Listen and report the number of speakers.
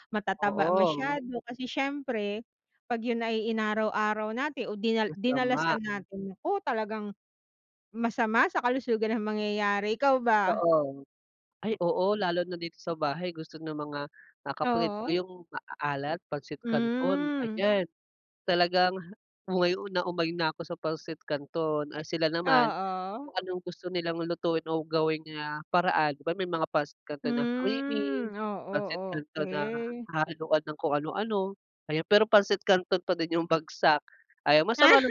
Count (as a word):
two